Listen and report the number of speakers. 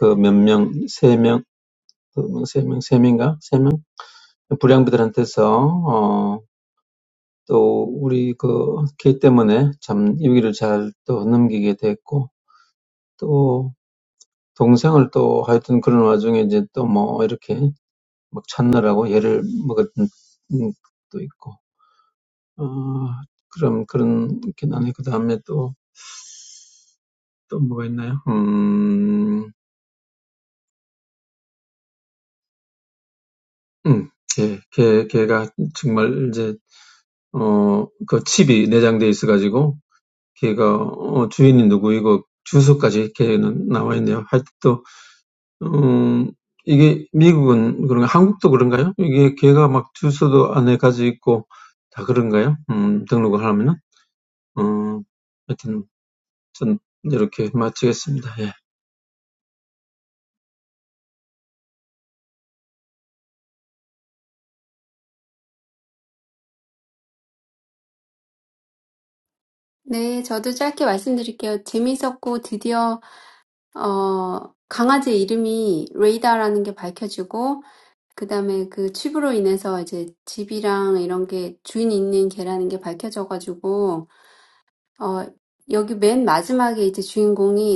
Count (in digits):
2